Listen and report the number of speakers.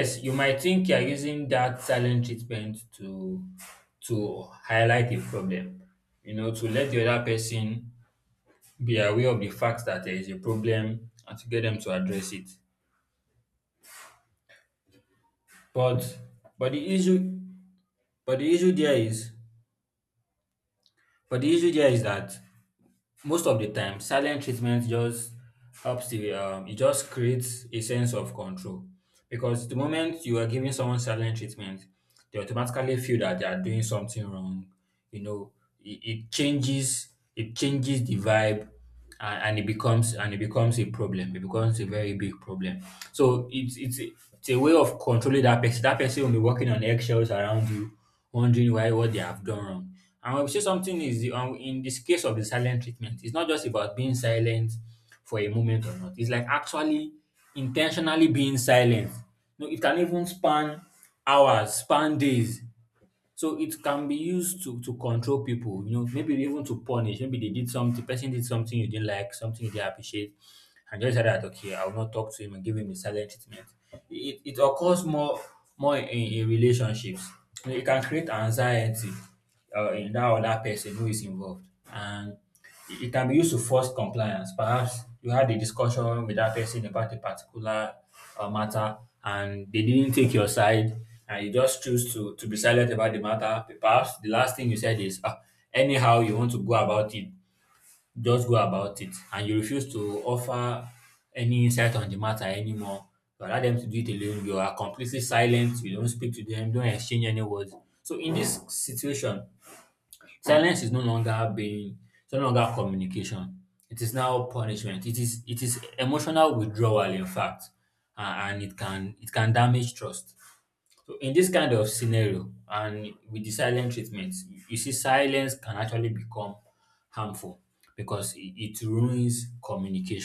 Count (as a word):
one